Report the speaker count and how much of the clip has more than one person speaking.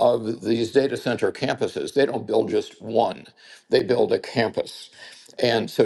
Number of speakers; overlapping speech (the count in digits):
1, no overlap